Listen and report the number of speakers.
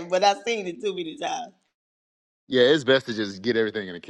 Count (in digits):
2